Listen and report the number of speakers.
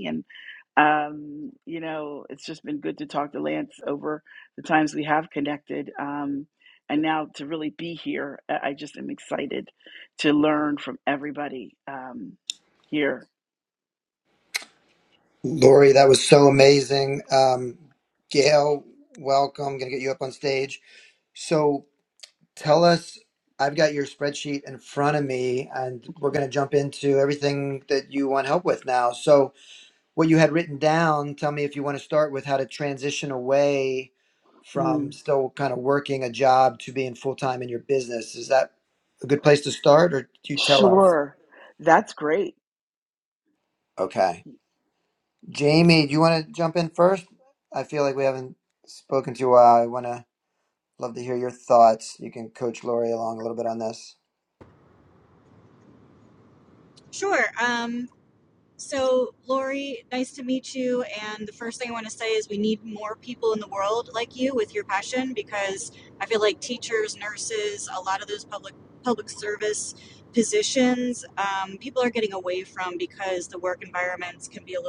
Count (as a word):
three